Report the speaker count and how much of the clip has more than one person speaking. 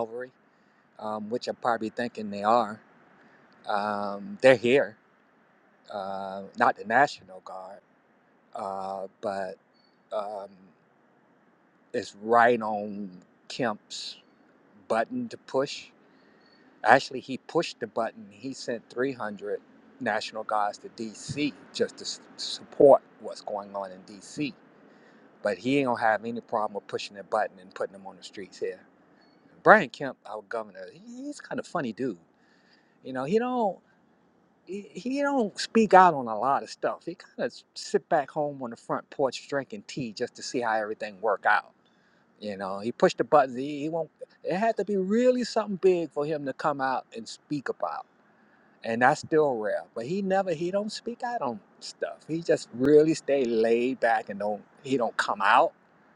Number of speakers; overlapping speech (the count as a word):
one, no overlap